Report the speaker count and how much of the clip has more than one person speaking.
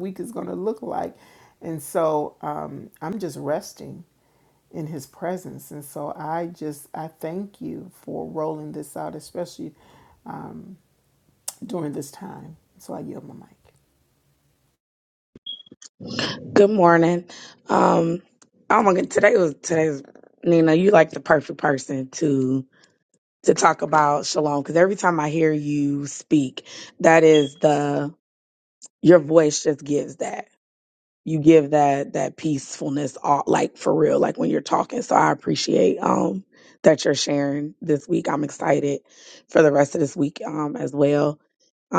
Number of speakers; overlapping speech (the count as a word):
two, no overlap